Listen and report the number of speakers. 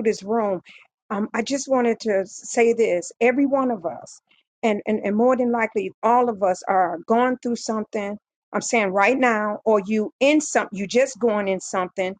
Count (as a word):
one